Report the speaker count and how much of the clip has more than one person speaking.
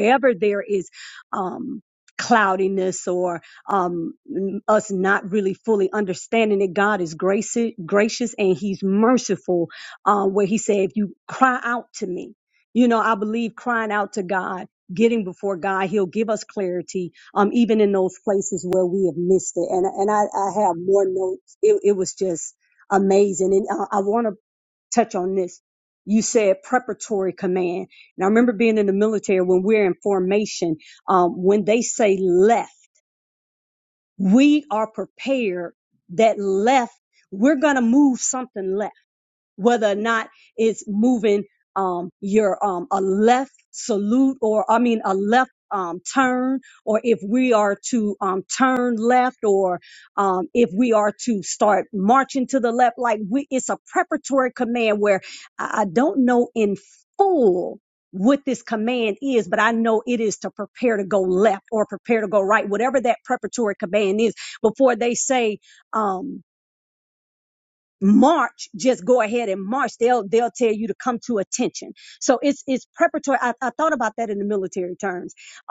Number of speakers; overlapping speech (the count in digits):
1, no overlap